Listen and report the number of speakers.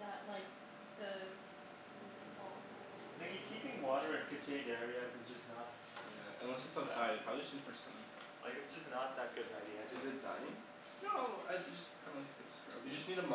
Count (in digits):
4